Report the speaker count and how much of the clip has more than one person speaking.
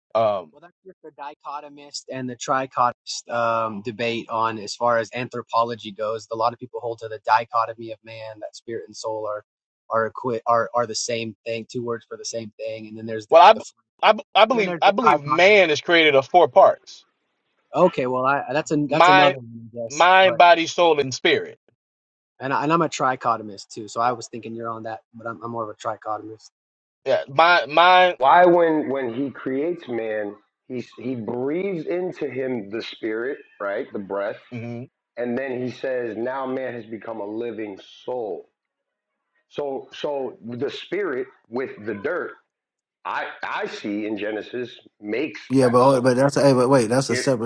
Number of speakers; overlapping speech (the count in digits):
4, about 5%